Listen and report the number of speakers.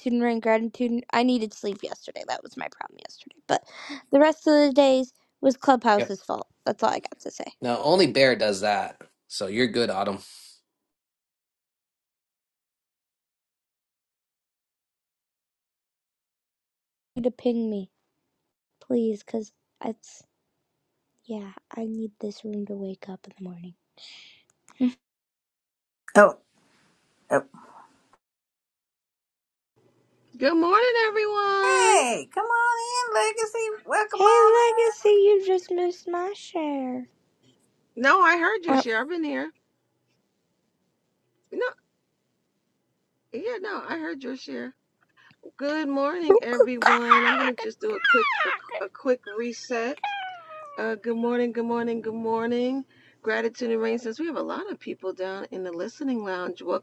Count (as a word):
four